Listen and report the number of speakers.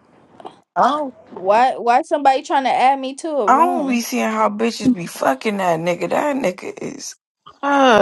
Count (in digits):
2